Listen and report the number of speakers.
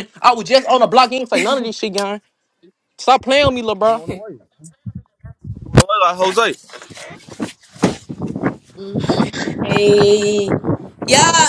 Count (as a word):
three